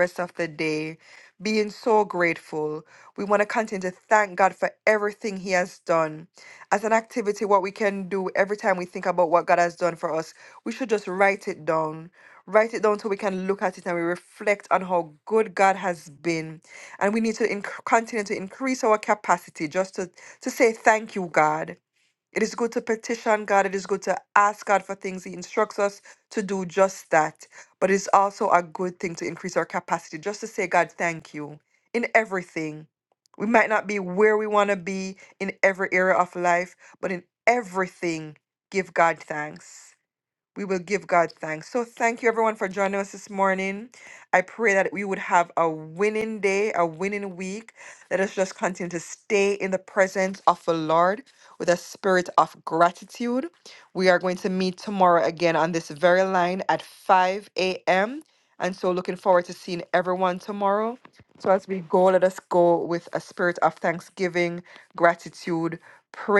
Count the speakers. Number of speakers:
one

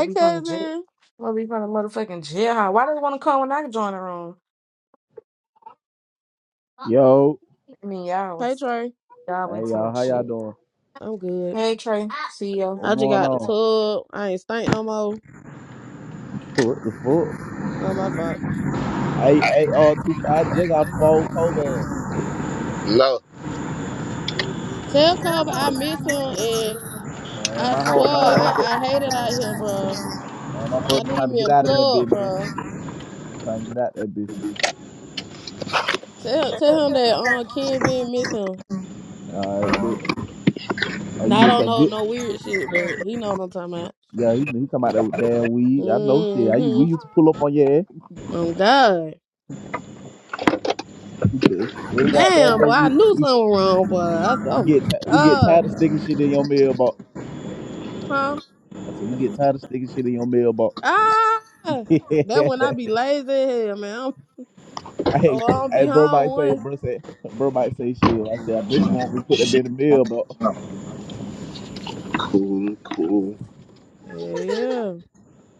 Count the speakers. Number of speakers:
four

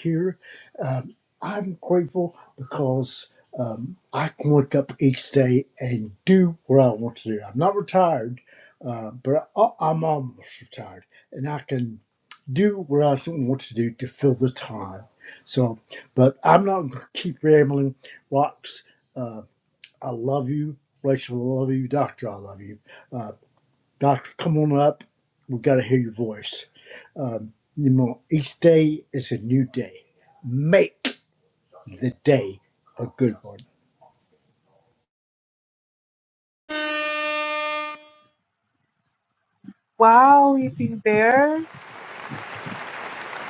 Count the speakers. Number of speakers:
two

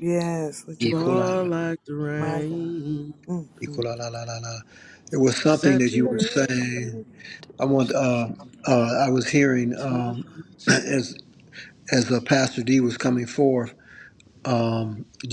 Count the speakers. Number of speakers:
three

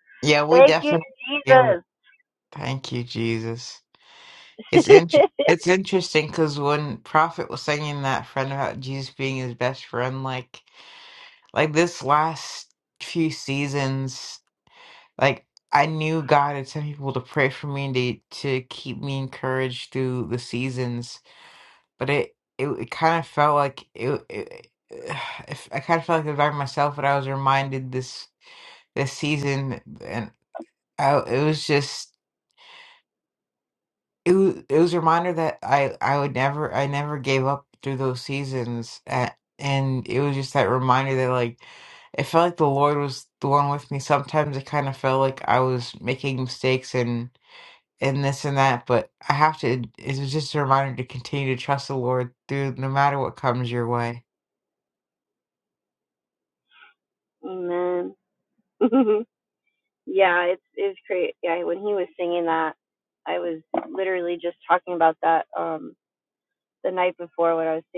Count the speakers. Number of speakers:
two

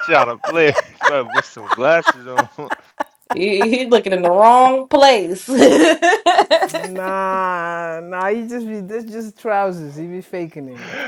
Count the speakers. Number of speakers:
three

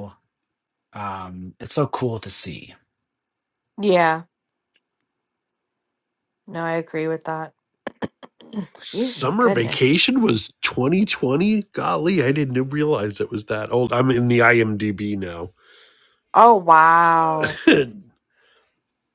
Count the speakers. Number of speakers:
three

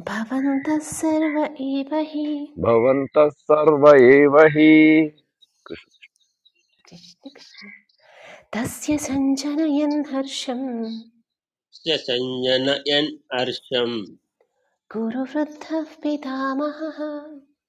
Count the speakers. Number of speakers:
three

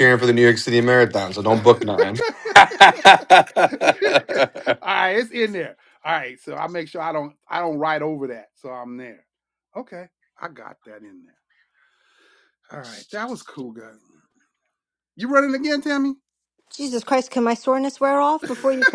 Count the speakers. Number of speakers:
three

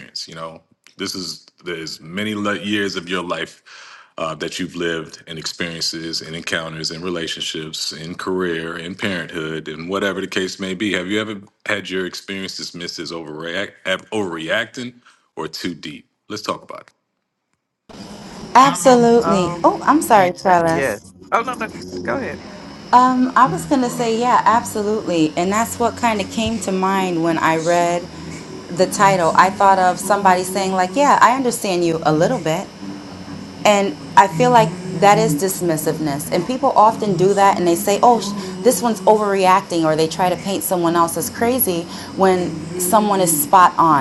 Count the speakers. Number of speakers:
three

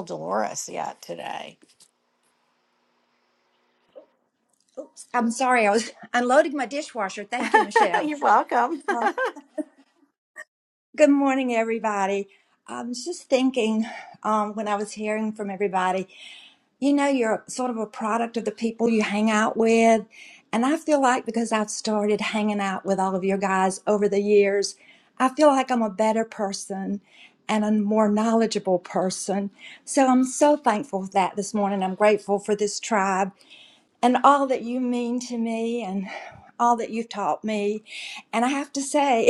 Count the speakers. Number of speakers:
two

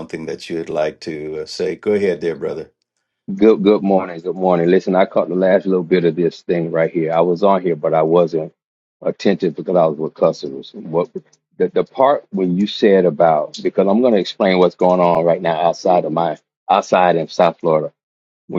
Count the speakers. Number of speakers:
two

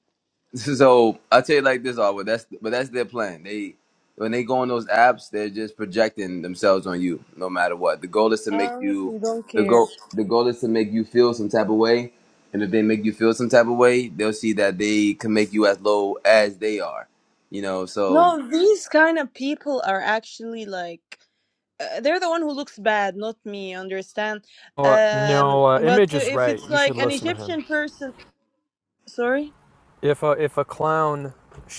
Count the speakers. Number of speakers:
three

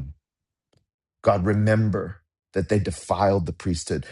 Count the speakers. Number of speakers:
one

